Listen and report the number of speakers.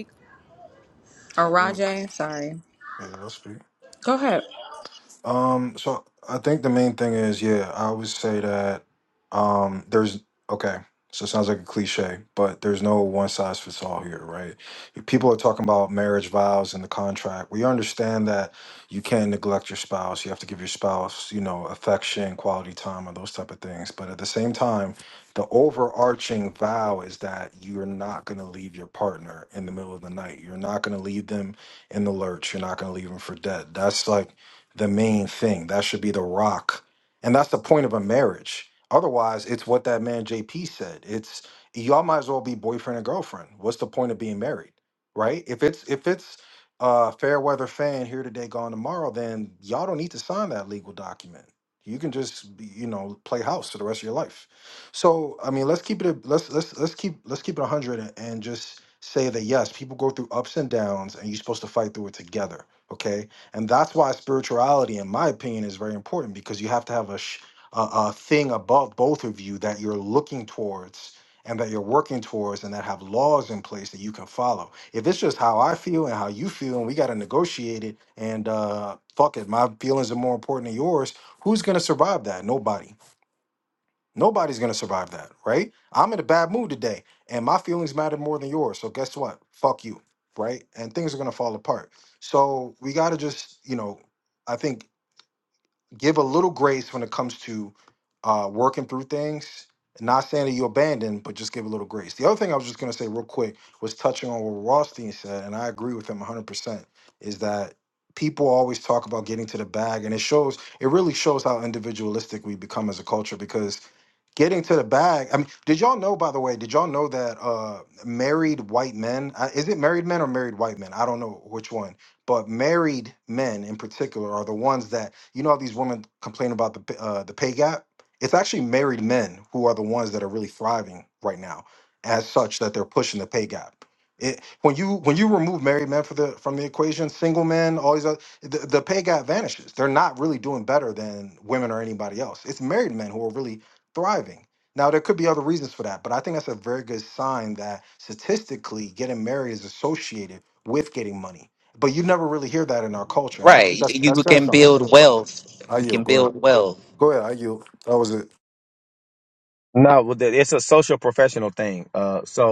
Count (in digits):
4